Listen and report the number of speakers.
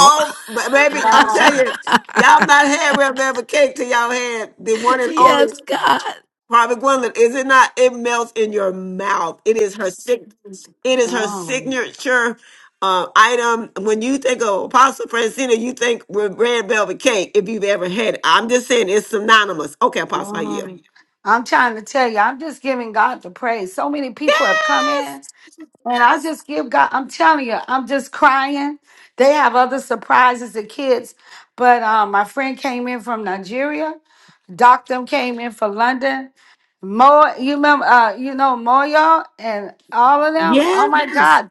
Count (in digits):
3